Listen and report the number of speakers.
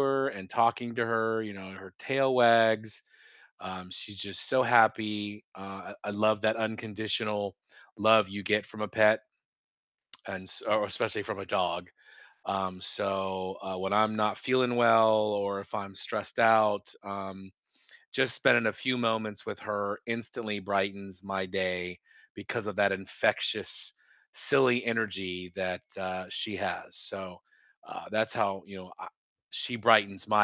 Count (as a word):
one